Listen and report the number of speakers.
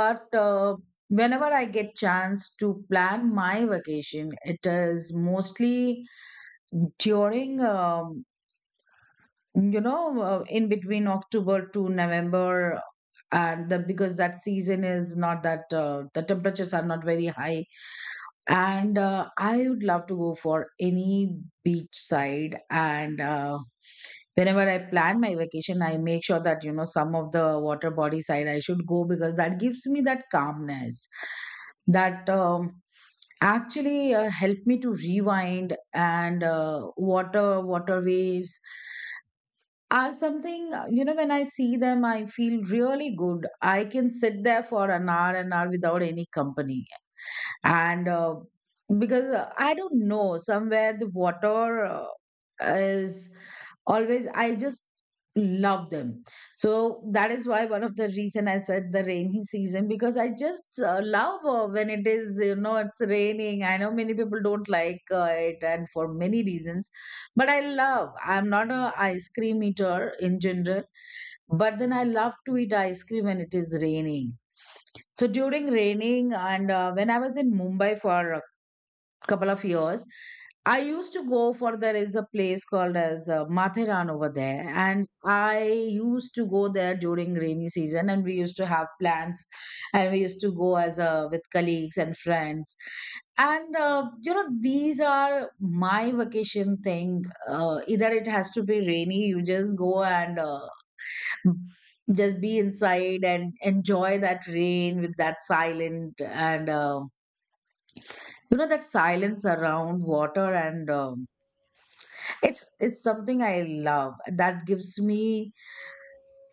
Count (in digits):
1